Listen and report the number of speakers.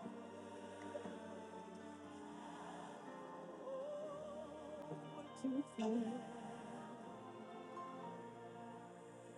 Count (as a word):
zero